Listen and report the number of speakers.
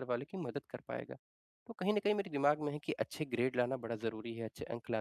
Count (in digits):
1